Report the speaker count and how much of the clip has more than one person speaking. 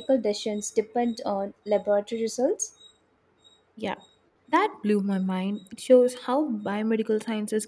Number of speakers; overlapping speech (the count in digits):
2, no overlap